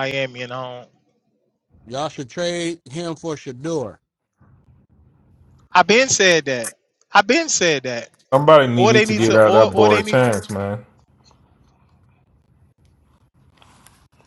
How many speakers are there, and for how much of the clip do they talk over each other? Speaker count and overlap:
three, about 10%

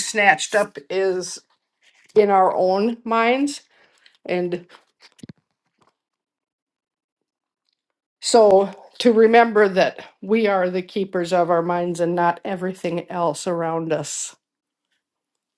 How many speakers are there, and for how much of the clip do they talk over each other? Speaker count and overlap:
one, no overlap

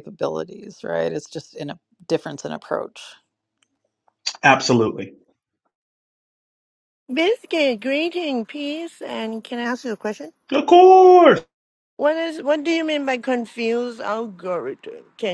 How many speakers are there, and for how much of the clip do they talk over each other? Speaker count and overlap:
three, no overlap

